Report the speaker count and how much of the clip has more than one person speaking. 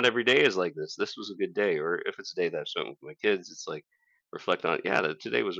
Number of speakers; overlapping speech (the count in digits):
1, no overlap